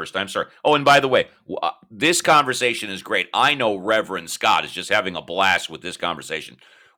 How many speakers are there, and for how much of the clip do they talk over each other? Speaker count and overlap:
1, no overlap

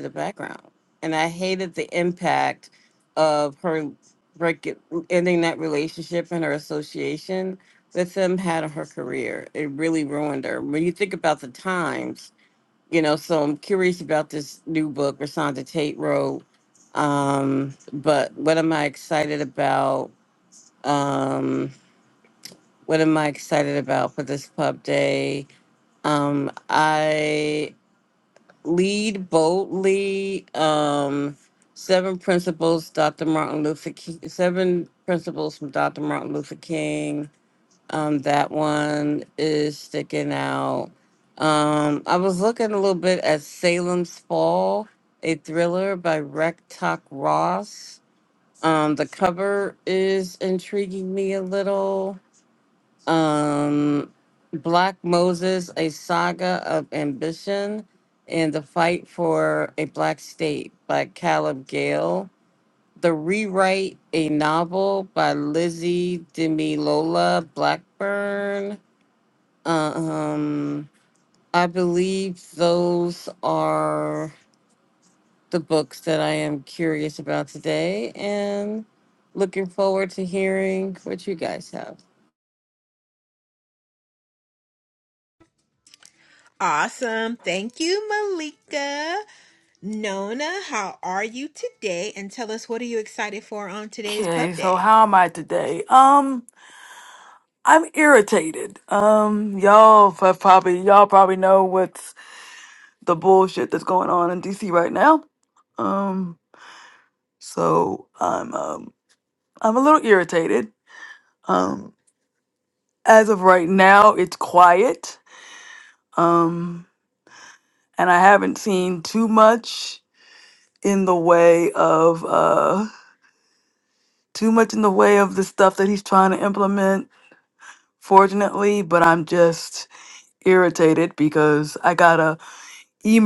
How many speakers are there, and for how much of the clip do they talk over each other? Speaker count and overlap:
3, about 1%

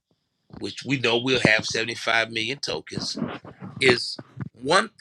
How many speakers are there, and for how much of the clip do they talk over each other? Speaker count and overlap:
1, no overlap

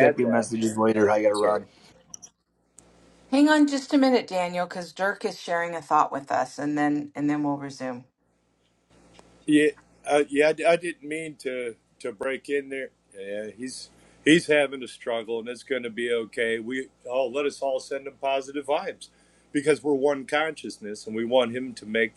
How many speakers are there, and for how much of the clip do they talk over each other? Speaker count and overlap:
3, about 4%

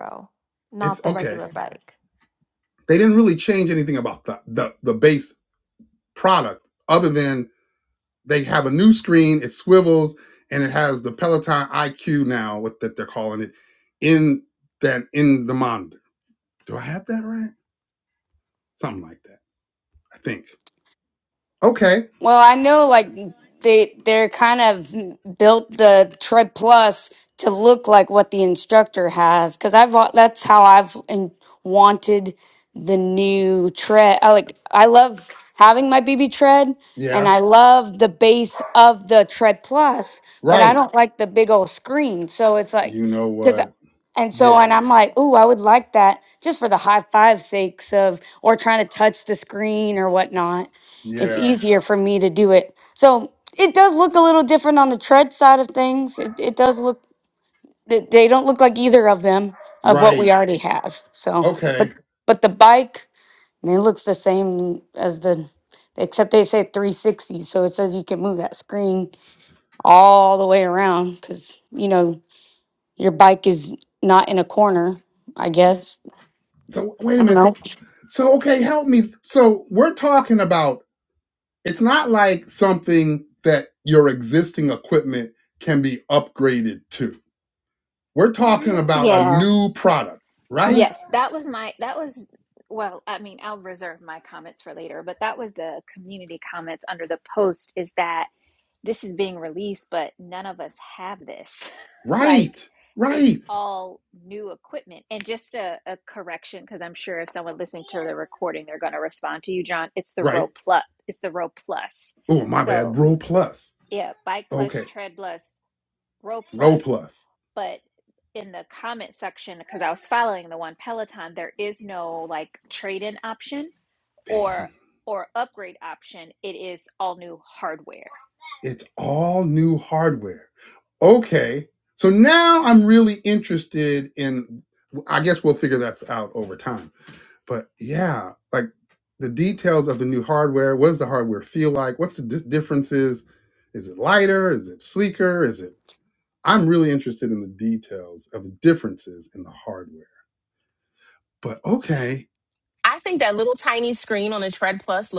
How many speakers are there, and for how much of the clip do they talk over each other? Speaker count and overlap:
5, about 4%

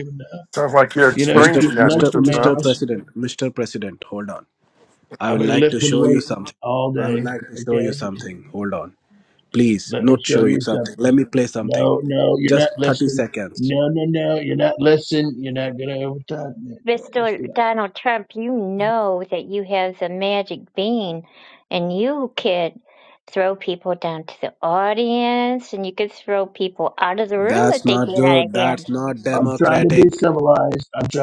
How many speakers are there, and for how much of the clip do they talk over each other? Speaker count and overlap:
4, about 30%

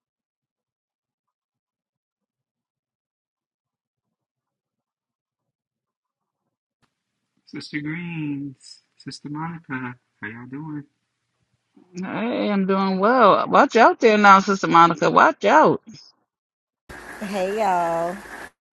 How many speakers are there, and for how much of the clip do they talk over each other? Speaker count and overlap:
3, no overlap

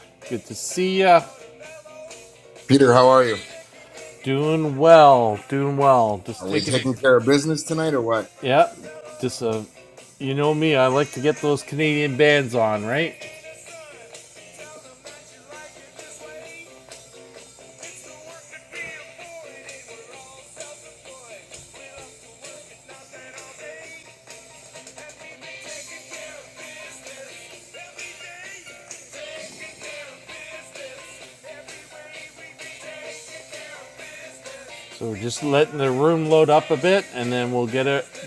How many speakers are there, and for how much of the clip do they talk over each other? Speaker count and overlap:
2, about 1%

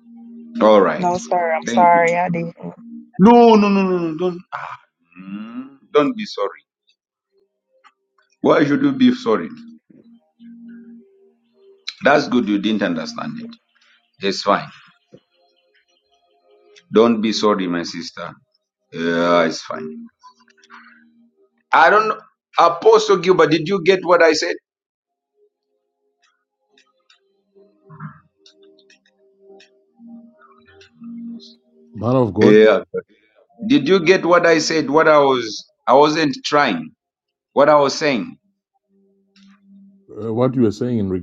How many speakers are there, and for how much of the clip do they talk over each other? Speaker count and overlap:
3, about 2%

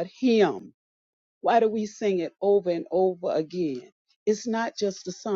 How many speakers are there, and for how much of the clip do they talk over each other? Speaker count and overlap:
1, no overlap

